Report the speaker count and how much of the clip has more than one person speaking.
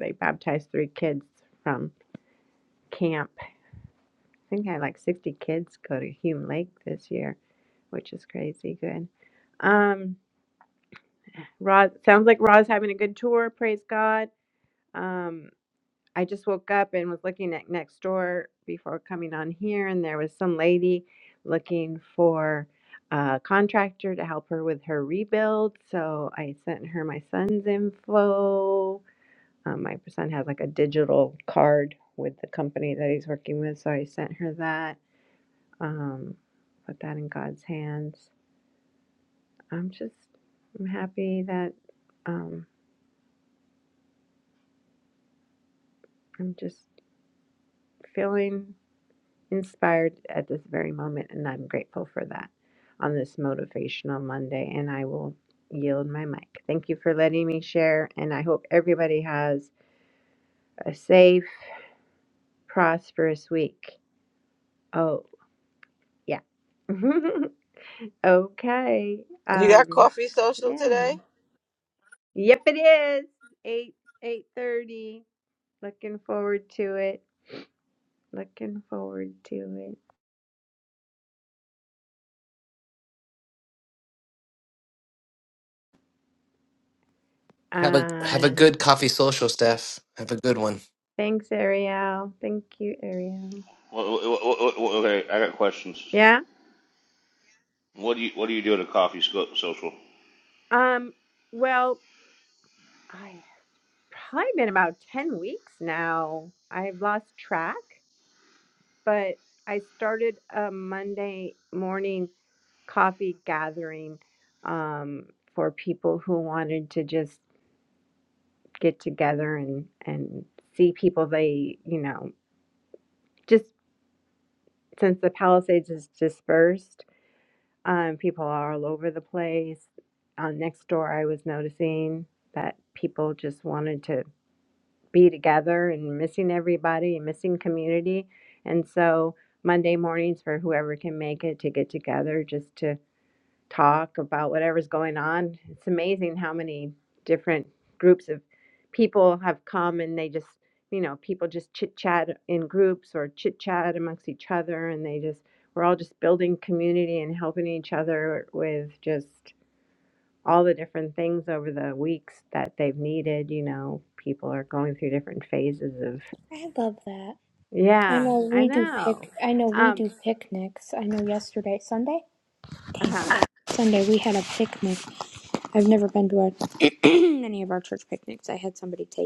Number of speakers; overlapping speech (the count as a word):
five, about 2%